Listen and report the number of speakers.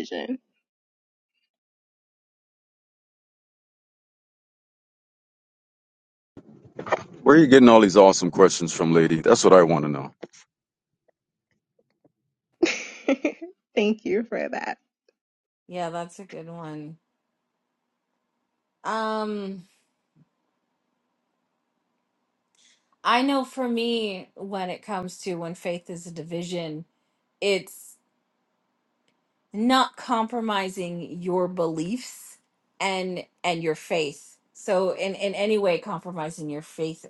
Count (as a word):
three